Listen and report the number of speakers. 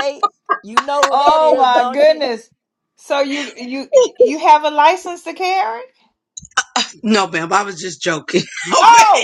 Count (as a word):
three